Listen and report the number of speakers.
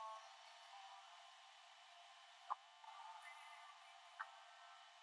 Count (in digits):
0